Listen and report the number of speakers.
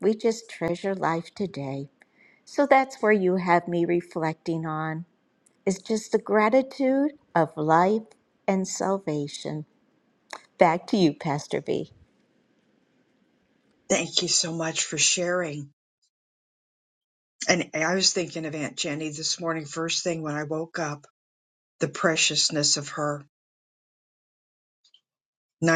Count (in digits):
2